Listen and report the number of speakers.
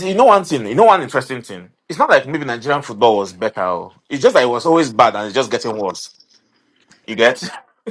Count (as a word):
one